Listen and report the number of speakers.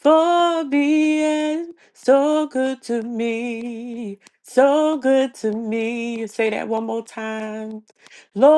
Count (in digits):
1